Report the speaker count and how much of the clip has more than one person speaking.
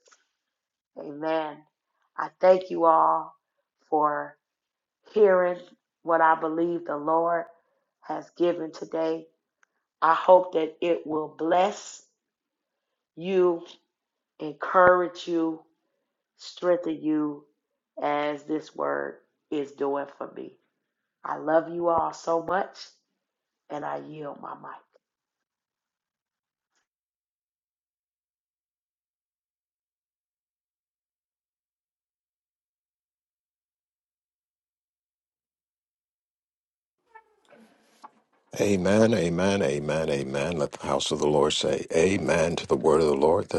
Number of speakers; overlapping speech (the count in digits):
2, no overlap